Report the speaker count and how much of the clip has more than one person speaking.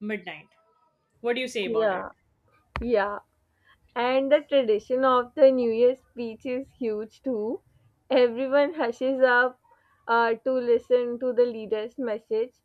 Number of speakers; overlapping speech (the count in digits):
2, about 3%